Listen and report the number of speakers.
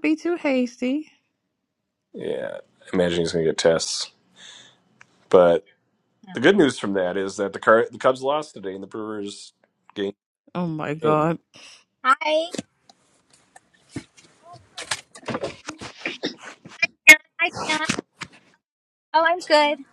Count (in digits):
3